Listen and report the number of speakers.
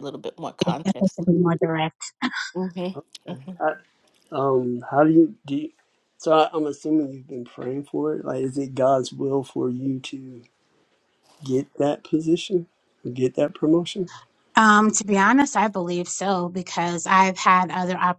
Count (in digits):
3